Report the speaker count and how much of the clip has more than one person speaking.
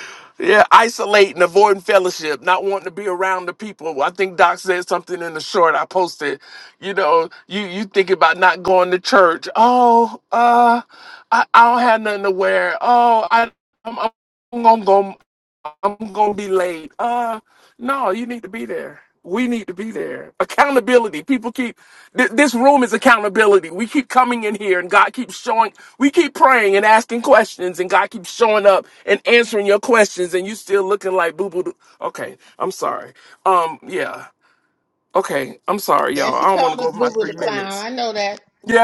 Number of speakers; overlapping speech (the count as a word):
two, about 4%